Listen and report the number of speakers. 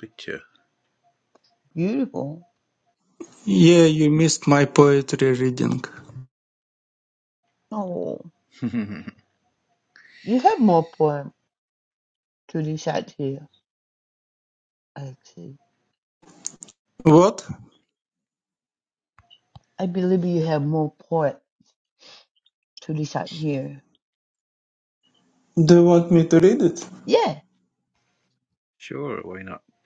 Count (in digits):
3